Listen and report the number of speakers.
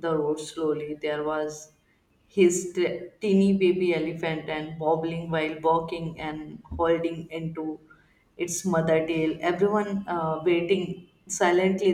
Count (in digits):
1